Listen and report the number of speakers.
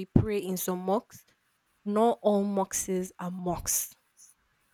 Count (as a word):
one